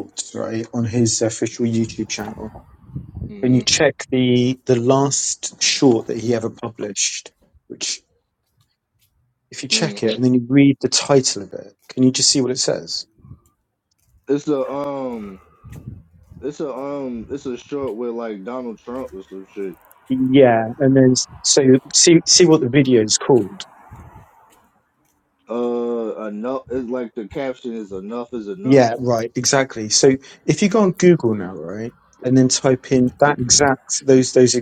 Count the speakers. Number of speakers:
2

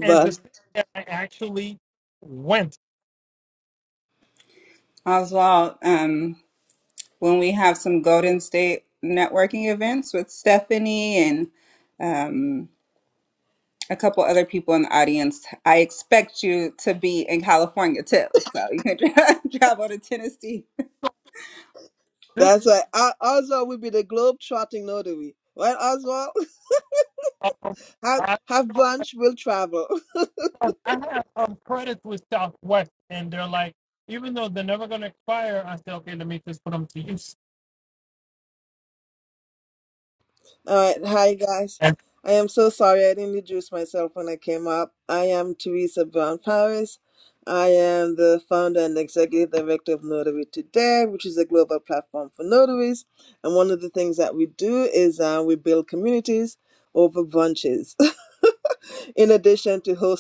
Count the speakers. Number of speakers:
3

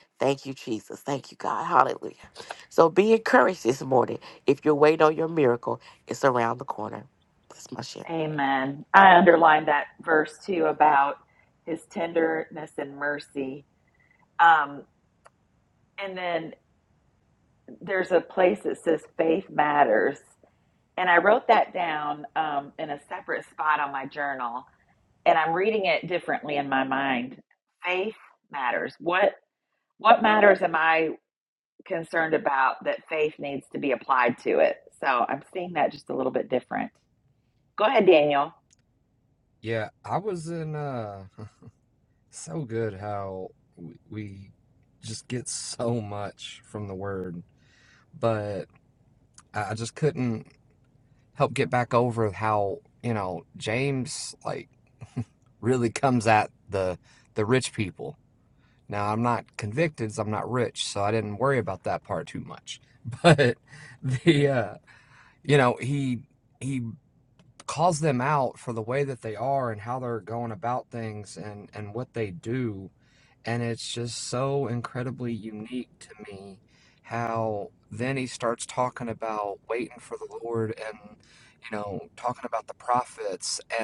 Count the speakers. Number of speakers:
3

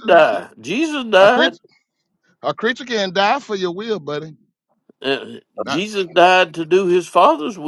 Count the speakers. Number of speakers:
2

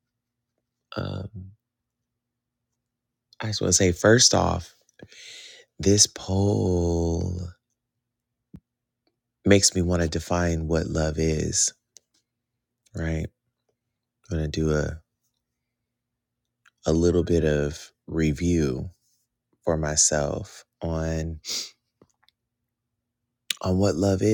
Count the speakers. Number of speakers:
1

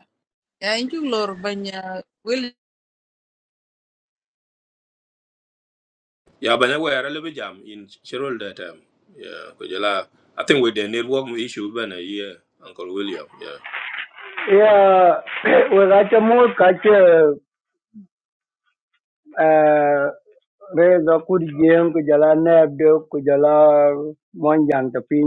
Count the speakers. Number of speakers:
3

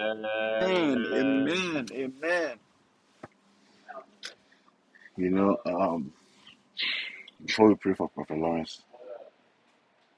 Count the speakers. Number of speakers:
3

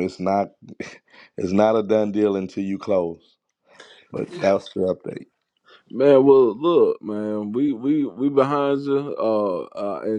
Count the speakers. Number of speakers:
2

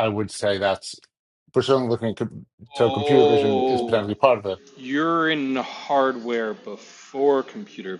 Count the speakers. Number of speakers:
2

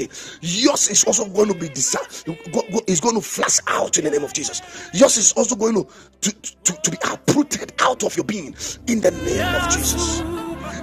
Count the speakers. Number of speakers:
1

